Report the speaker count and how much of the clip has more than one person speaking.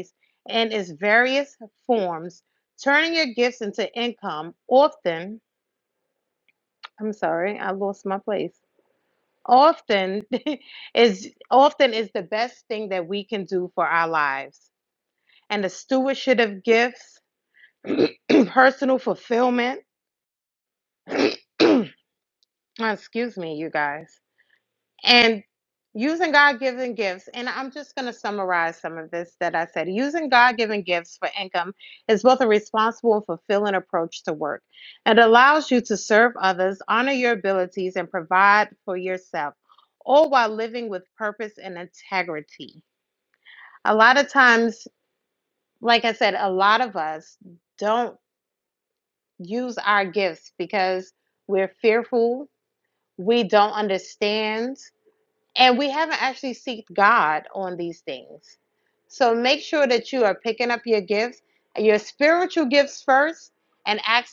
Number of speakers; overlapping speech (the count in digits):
1, no overlap